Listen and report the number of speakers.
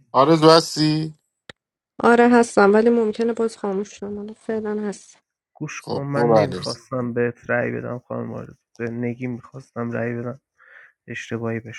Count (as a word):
three